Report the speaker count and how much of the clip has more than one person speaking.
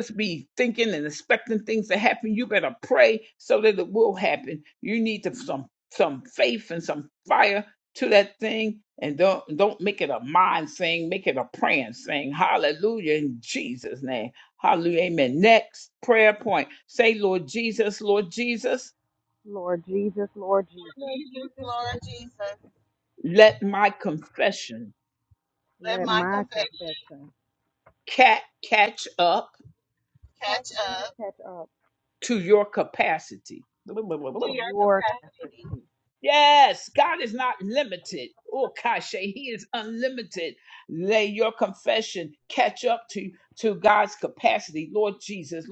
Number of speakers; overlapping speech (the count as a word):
three, about 6%